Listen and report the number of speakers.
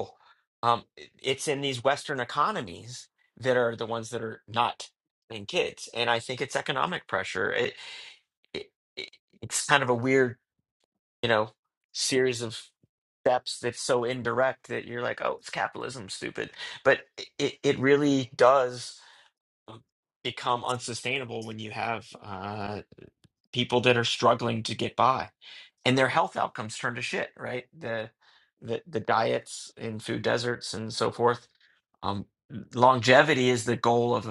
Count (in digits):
1